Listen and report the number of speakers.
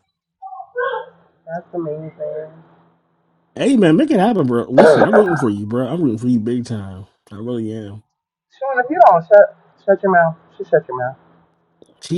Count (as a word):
two